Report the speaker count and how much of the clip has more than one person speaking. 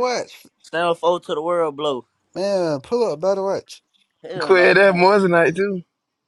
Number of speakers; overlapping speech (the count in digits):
3, about 11%